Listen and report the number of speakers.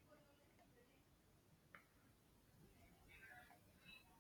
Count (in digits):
0